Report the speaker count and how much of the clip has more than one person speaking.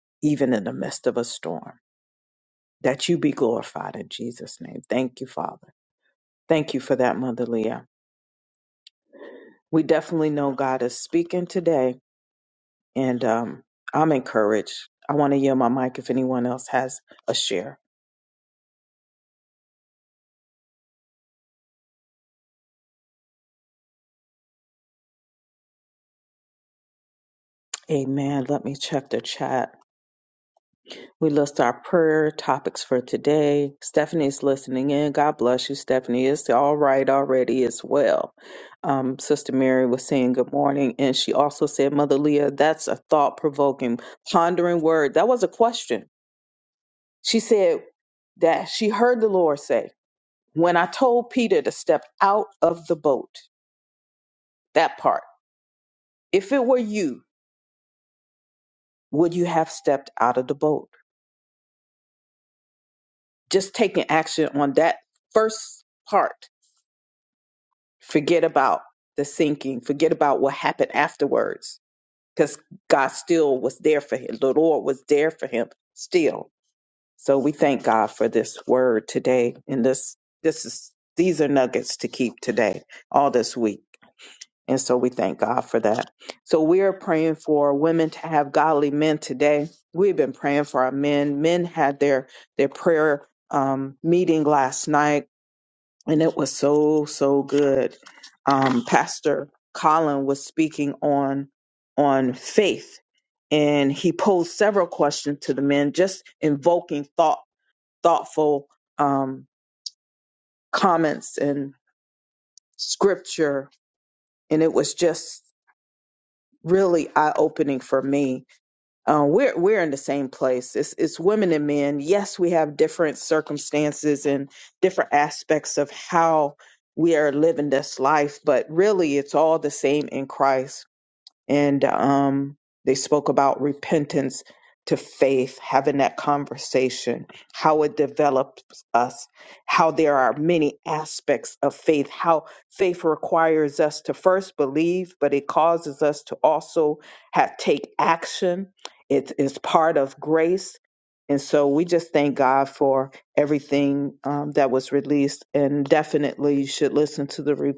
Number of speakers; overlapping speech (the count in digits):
1, no overlap